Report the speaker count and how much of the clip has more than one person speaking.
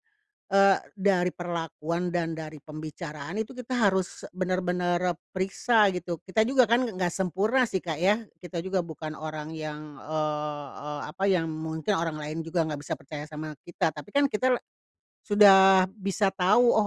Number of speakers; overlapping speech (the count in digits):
1, no overlap